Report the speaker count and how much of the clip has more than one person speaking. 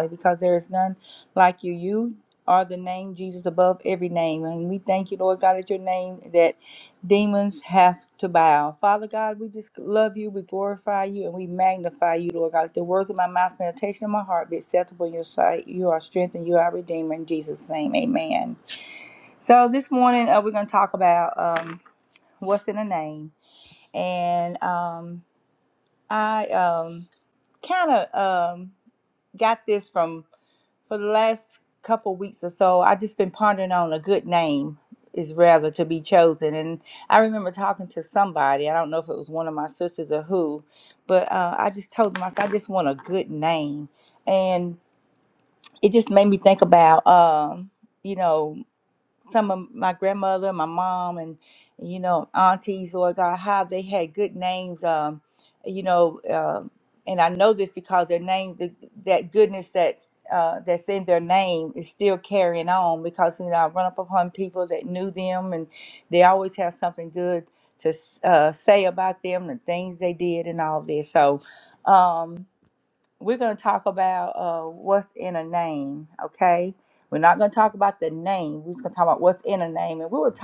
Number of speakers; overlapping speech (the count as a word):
one, no overlap